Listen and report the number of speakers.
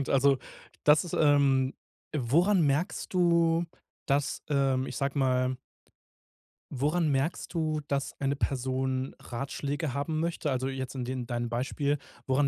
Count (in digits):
1